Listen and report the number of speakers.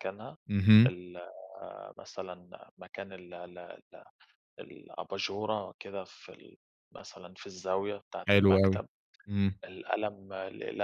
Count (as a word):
two